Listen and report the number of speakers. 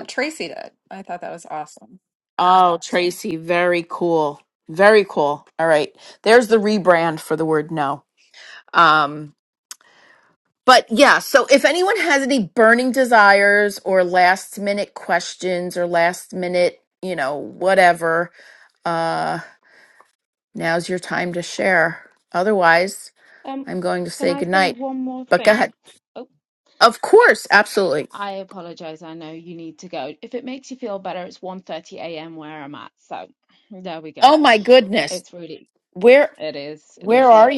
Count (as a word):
three